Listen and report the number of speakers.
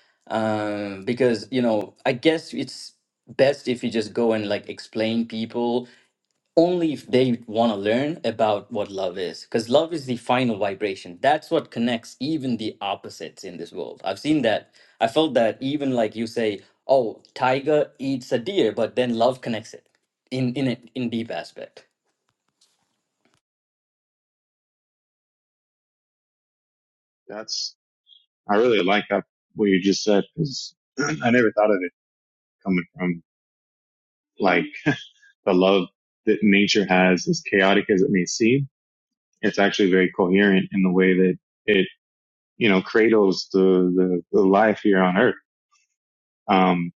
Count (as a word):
two